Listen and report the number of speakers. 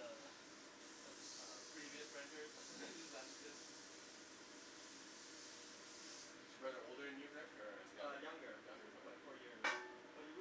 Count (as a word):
three